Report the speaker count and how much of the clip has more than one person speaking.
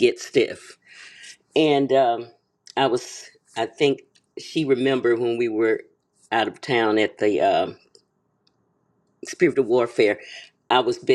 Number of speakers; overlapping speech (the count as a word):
one, no overlap